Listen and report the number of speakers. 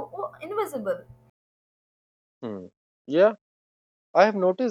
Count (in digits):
2